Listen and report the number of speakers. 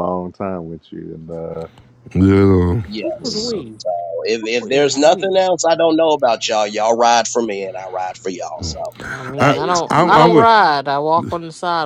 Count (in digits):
4